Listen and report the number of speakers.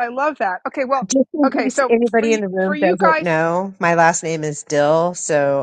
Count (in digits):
2